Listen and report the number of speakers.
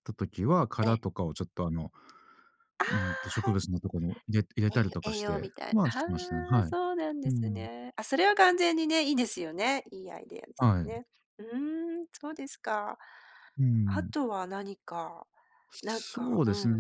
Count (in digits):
2